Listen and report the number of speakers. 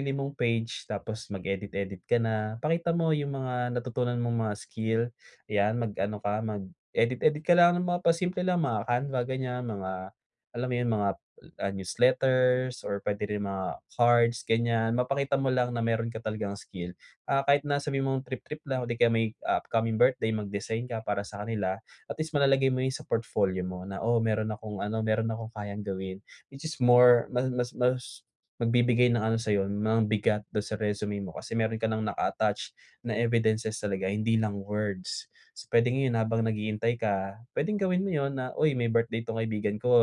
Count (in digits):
1